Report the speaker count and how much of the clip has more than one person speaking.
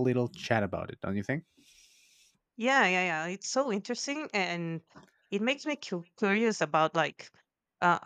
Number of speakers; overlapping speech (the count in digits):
2, no overlap